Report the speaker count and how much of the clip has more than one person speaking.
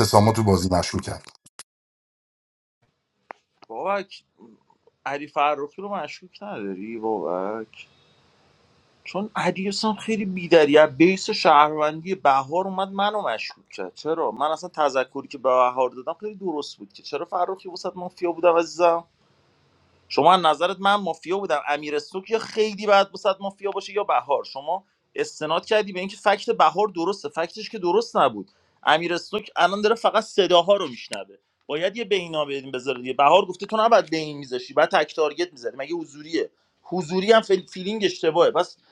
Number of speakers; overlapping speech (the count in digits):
2, no overlap